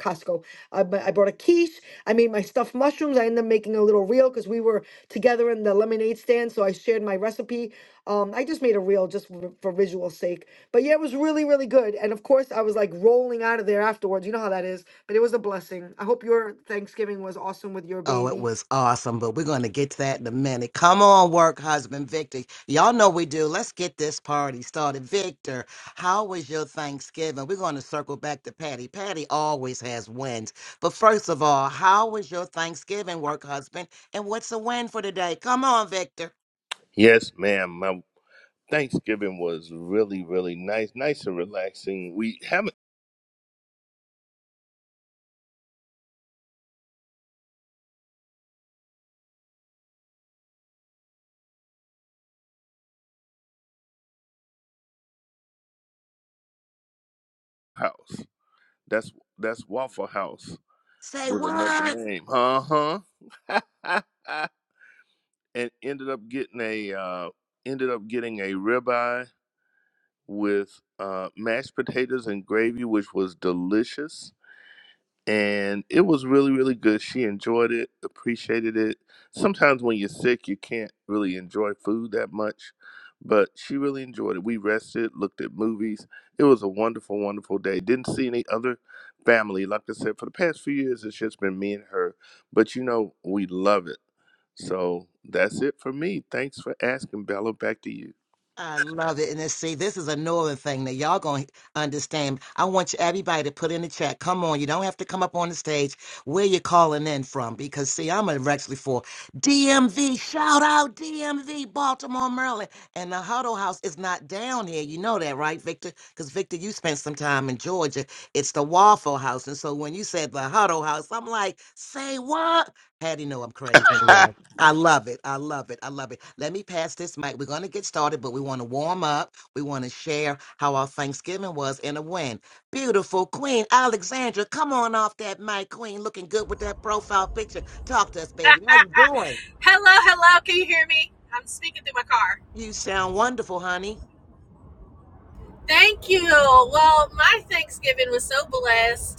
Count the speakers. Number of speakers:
4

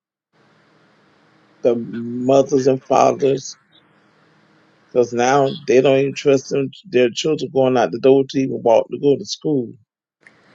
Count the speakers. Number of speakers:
1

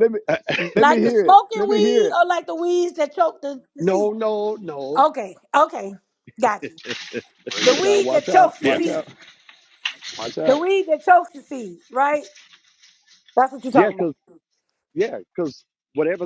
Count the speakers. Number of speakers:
3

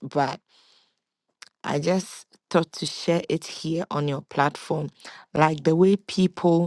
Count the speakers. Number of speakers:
1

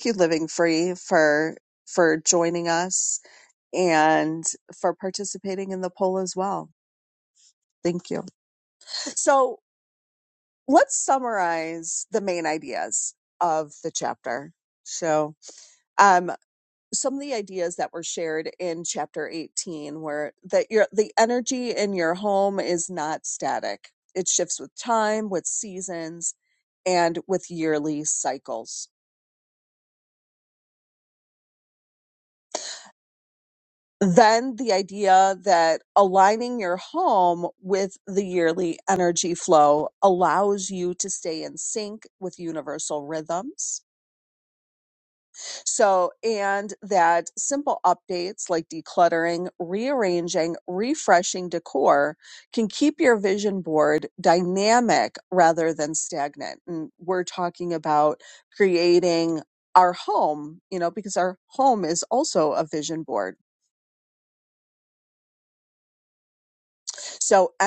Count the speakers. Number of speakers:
1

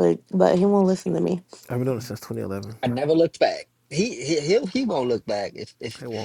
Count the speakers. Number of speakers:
3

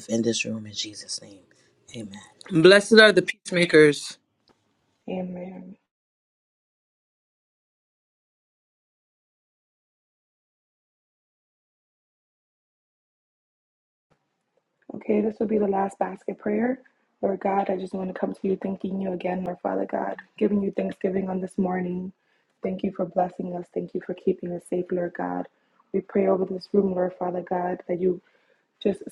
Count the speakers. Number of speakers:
3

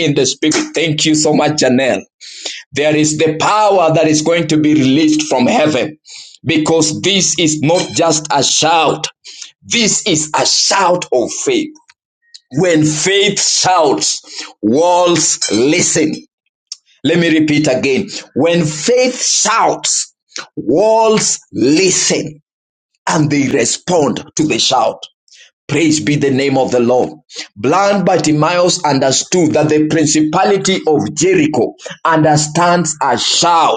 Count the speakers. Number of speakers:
1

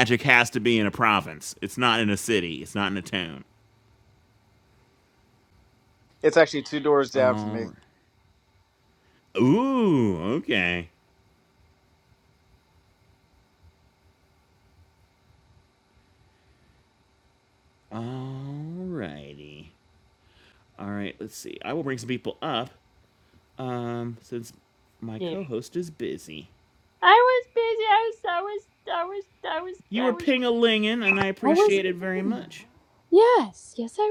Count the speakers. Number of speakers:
3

